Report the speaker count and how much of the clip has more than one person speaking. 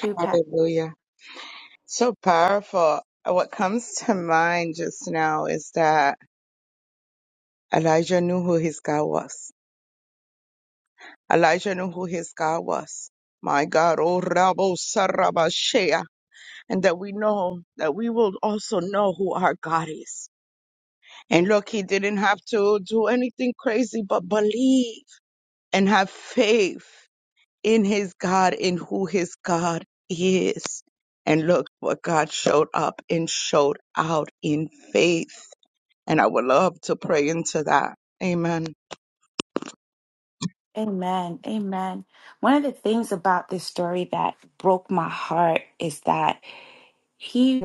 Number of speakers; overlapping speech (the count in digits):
2, about 1%